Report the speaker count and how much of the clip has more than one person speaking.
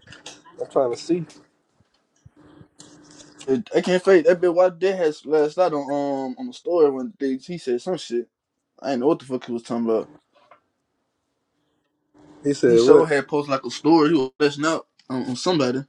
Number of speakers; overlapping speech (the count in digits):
2, about 3%